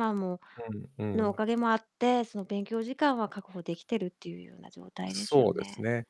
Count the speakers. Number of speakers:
two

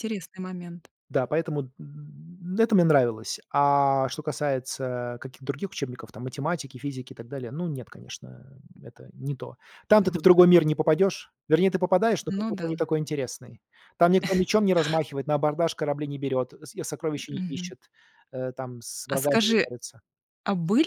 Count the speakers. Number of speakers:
two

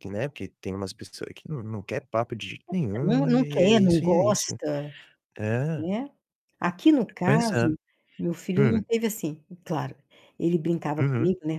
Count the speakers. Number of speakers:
two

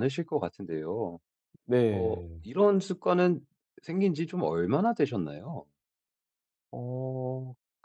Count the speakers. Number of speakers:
two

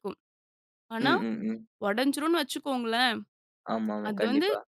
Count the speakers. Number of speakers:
two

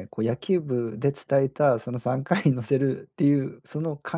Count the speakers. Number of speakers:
one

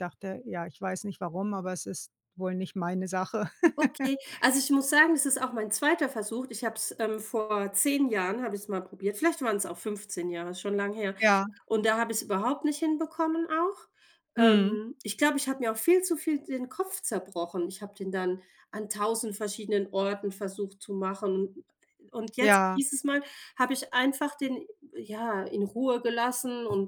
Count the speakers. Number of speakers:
two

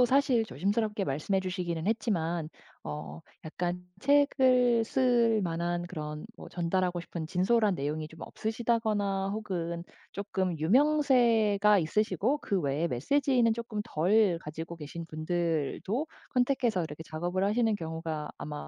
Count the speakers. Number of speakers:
one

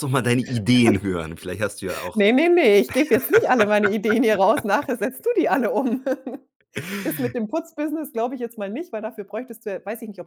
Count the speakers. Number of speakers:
two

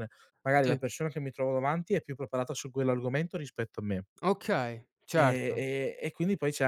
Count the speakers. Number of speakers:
two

